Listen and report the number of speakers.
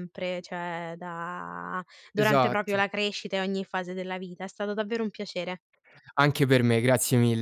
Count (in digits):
2